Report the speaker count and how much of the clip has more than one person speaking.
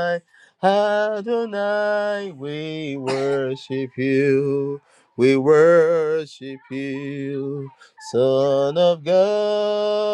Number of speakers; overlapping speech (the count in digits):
1, no overlap